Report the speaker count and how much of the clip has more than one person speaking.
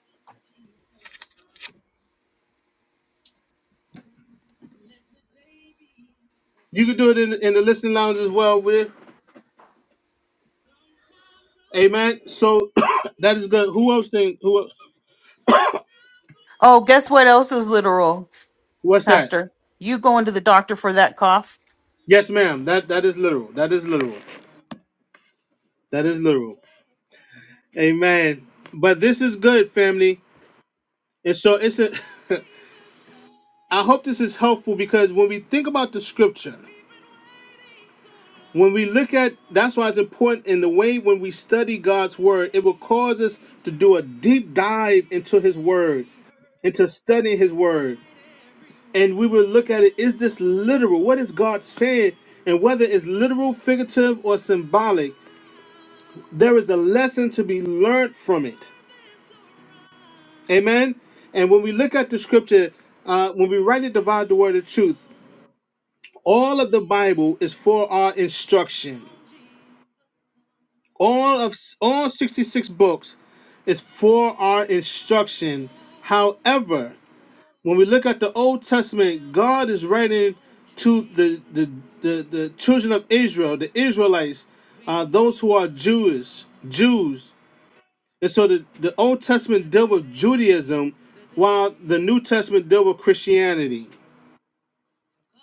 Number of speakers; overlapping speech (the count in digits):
2, under 1%